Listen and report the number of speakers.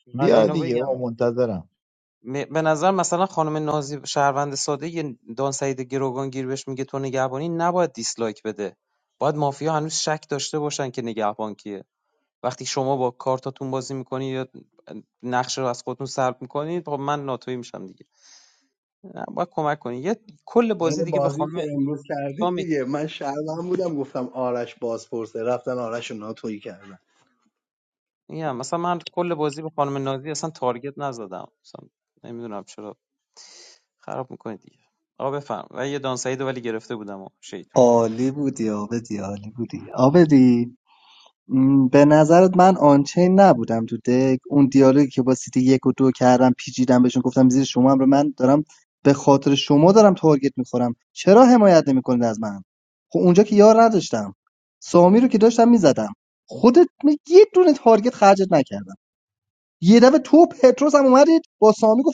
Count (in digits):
4